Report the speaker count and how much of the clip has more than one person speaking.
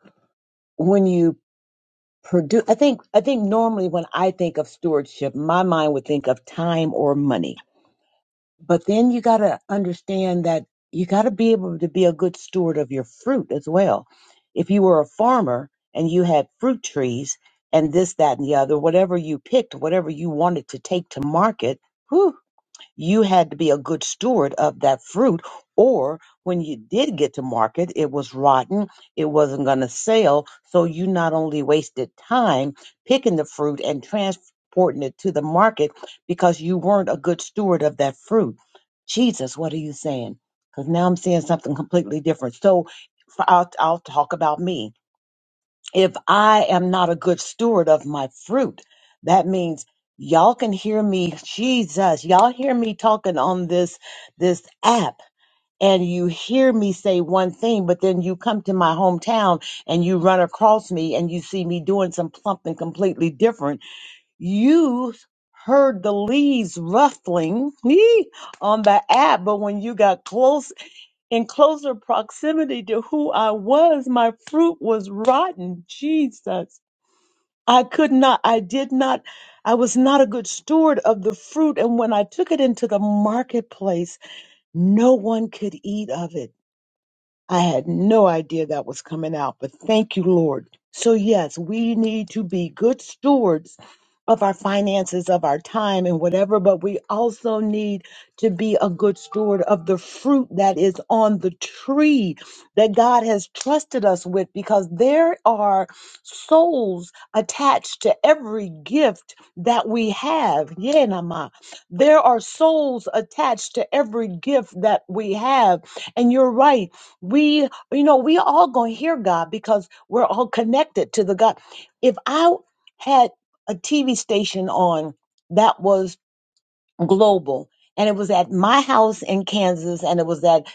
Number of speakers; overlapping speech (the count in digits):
1, no overlap